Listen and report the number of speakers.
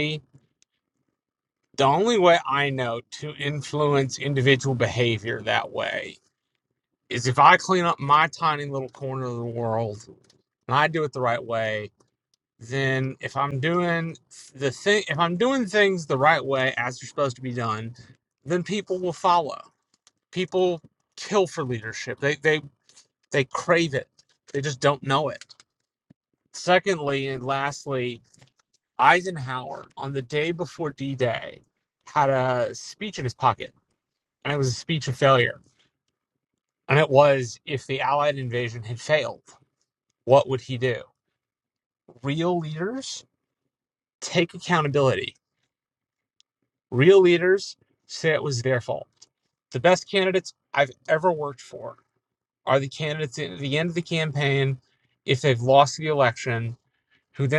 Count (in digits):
1